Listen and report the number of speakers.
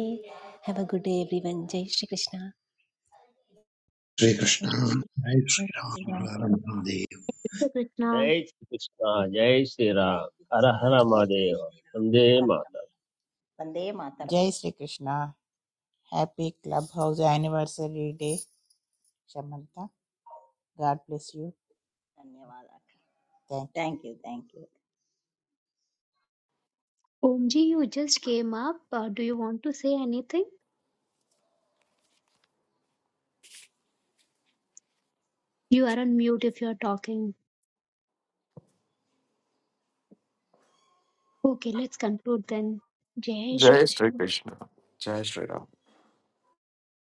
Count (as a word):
seven